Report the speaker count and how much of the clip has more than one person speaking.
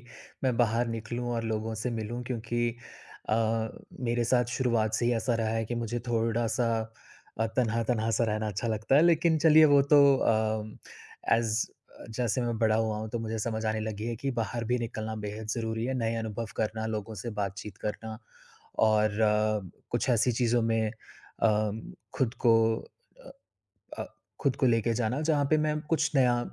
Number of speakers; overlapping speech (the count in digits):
1, no overlap